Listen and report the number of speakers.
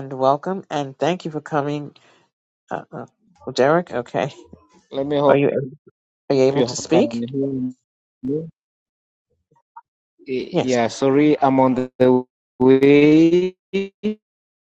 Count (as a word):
two